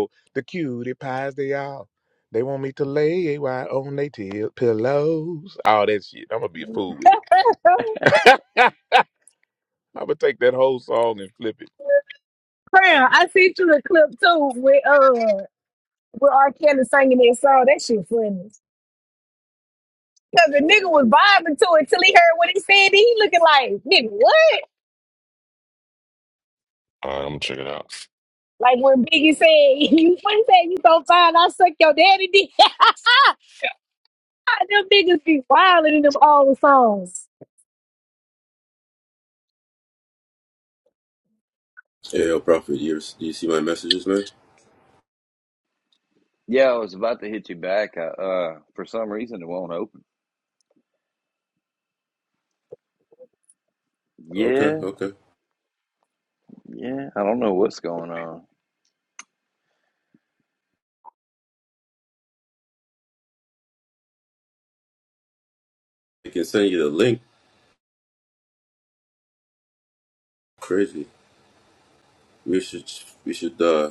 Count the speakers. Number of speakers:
5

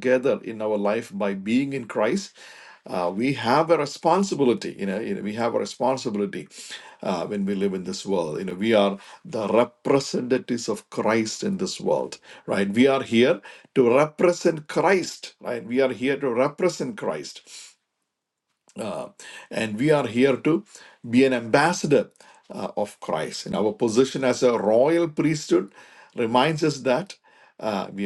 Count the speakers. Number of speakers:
1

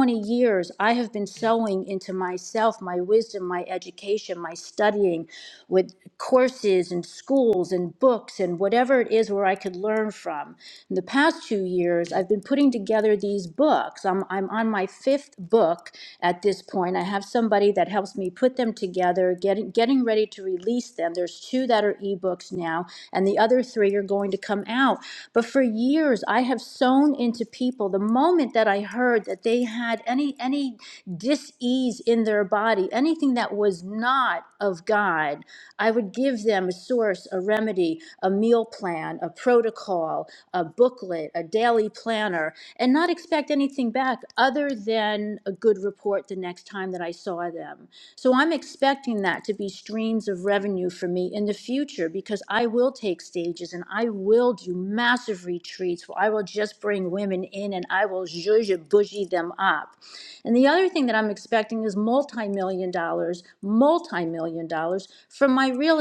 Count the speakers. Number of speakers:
1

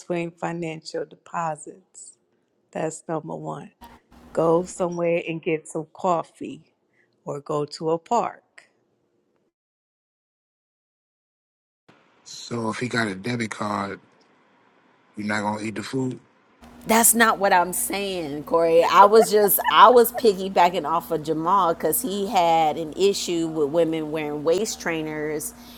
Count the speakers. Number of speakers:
3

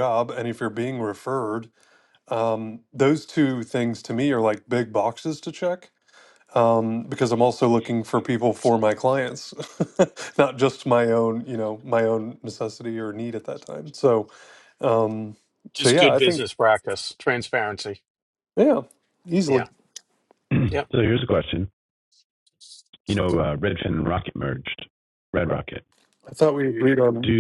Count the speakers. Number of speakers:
3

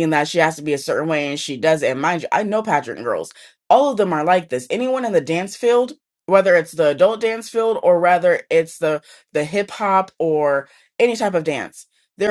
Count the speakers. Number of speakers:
1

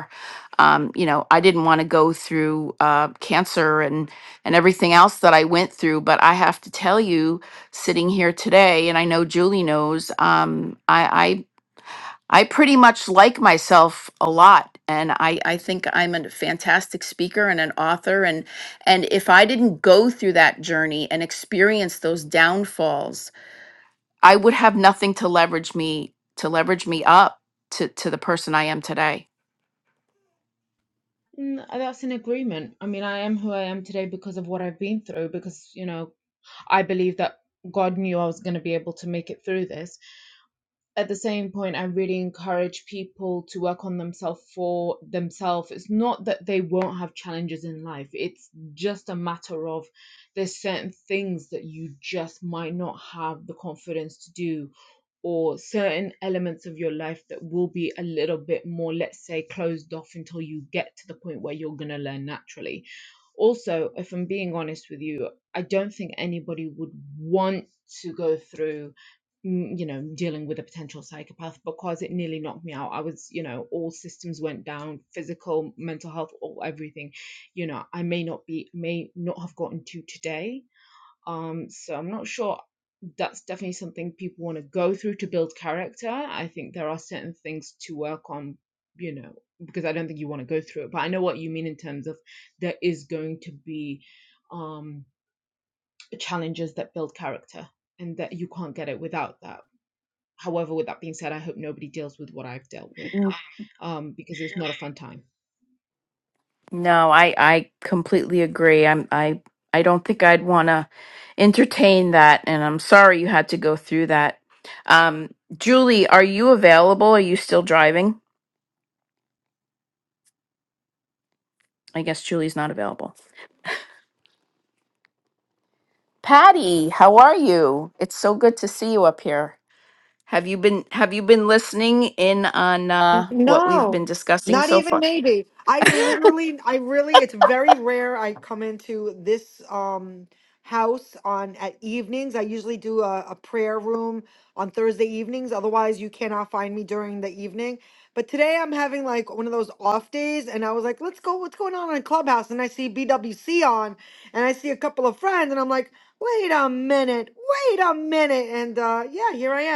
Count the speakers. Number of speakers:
3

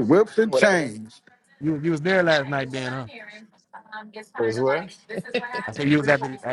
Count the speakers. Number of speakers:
3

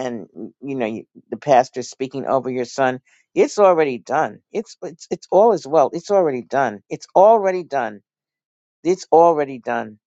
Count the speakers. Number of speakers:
1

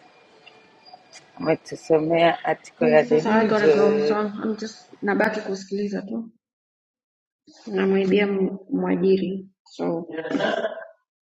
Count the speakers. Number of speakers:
2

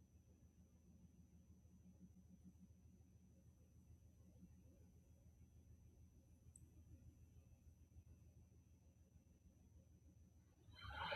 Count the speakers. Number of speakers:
0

